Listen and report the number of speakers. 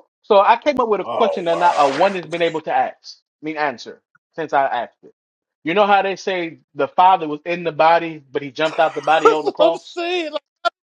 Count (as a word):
two